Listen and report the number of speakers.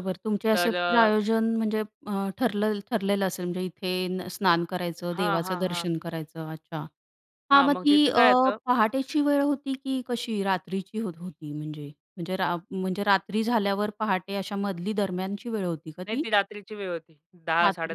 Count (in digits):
2